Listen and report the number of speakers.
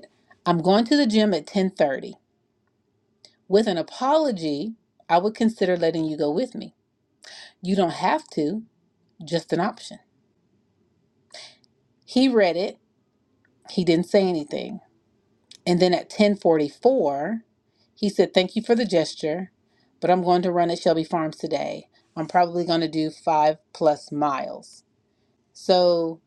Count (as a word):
one